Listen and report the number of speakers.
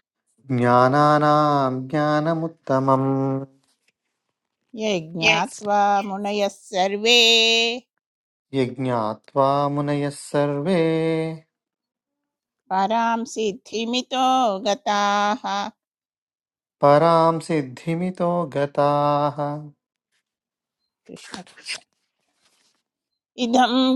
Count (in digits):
2